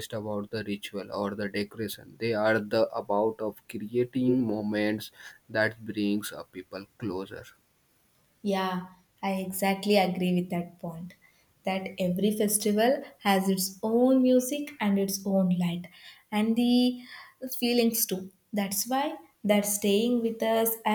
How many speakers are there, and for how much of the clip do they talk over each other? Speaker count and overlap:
two, no overlap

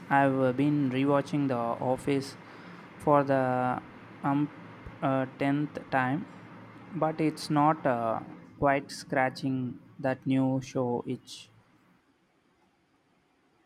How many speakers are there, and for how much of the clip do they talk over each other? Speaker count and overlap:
one, no overlap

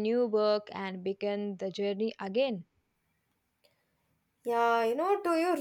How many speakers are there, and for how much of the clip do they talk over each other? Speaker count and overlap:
two, no overlap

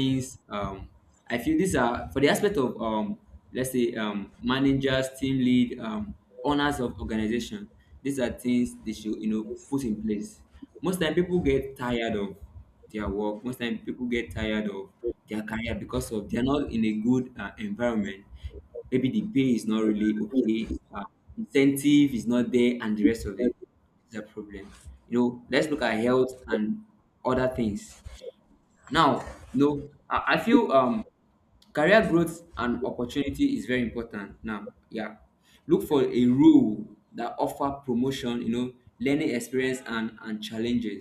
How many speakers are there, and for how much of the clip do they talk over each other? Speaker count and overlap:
one, no overlap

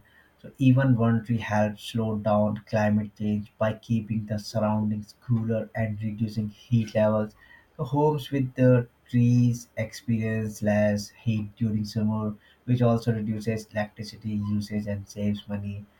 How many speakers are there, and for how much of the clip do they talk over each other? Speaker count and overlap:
one, no overlap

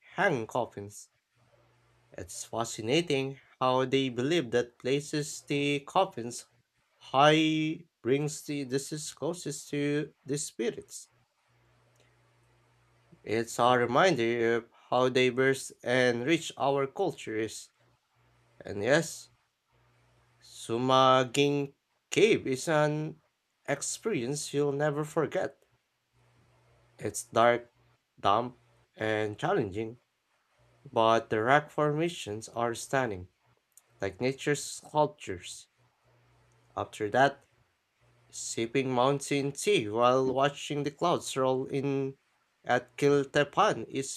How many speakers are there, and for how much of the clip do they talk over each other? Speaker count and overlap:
one, no overlap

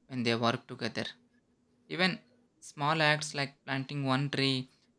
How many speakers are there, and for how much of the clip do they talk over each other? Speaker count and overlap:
one, no overlap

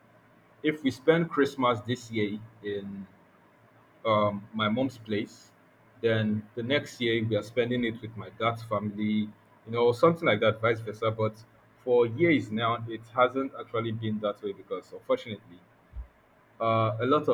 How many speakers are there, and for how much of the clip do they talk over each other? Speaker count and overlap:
one, no overlap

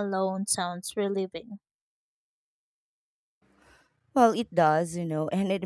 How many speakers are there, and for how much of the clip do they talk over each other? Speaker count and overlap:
two, no overlap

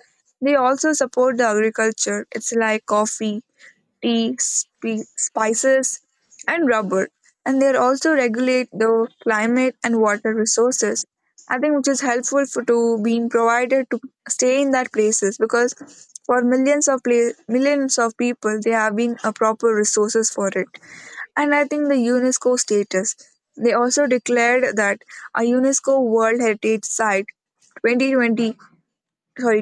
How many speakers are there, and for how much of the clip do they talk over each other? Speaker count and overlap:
one, no overlap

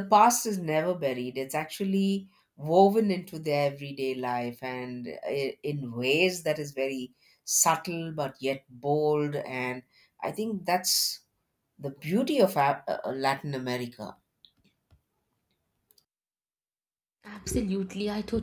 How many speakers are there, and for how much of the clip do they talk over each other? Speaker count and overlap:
two, no overlap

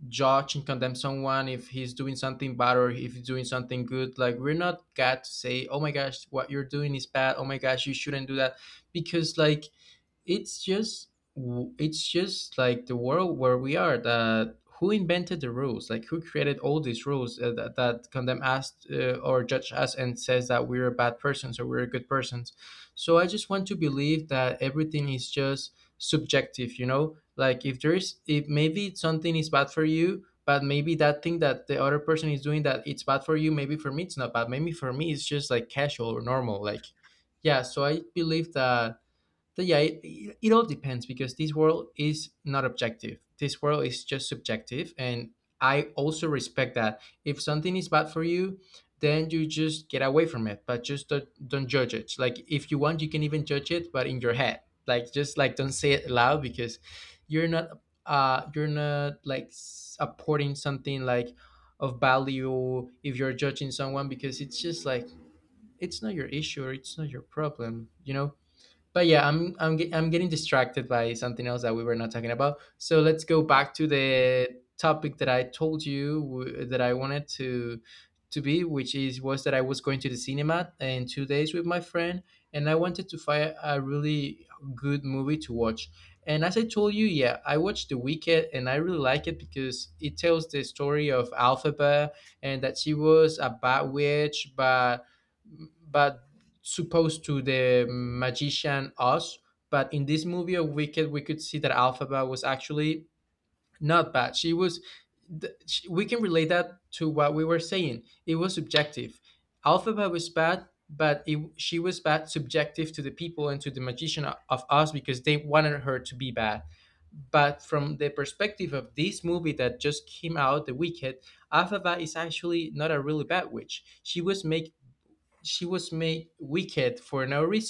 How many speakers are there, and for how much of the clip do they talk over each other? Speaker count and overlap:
one, no overlap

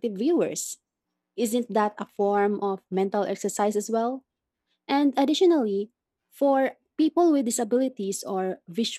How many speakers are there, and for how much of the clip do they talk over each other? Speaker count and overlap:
one, no overlap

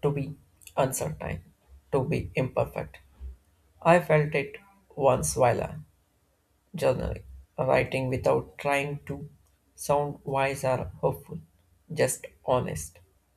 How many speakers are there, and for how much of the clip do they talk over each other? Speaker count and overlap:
one, no overlap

